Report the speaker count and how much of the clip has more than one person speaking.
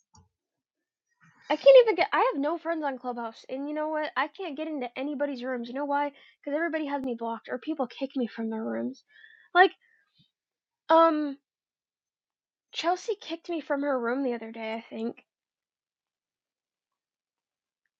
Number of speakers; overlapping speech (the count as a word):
one, no overlap